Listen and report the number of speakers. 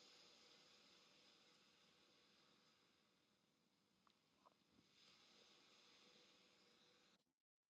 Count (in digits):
0